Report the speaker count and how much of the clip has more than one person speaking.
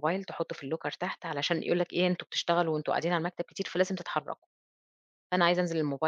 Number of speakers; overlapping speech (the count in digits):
1, no overlap